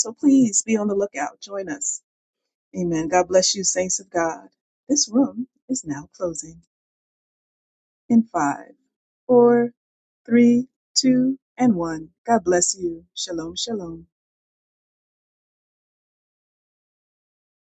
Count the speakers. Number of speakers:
1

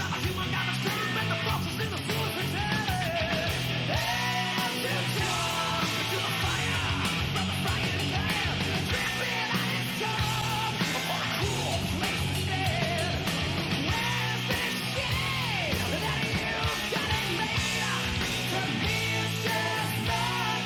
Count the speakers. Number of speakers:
0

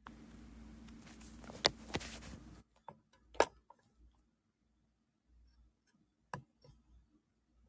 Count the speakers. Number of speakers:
0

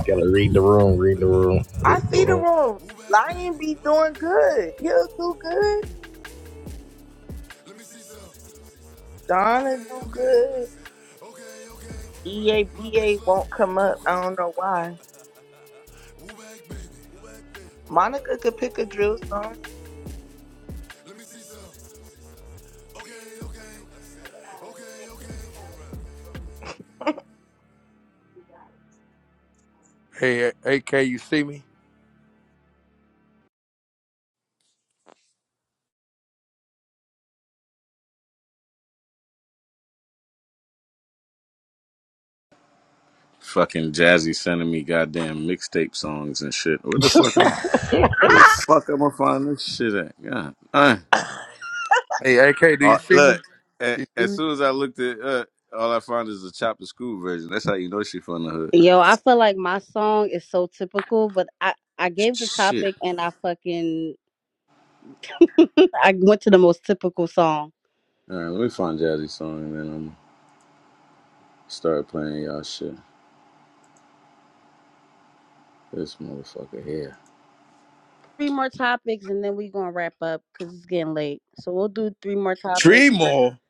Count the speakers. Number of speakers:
5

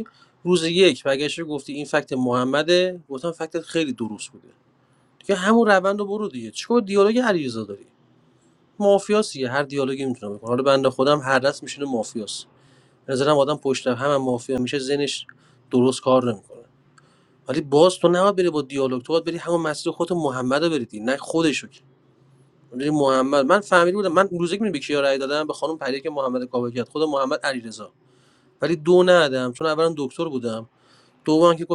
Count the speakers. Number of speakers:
1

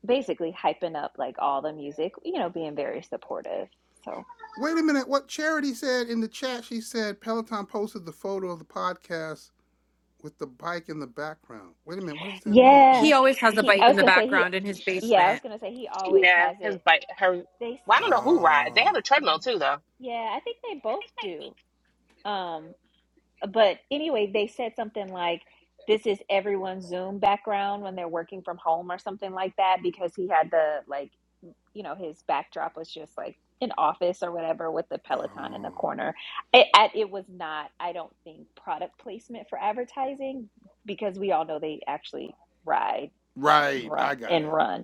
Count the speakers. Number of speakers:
4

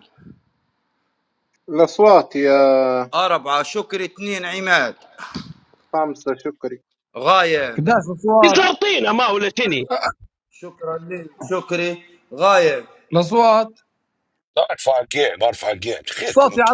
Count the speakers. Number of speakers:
5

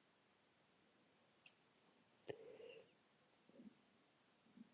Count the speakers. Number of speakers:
0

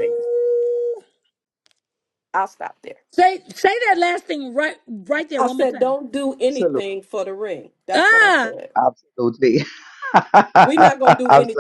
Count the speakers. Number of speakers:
3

